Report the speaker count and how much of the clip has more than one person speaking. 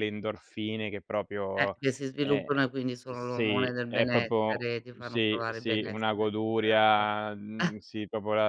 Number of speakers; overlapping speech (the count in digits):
2, about 43%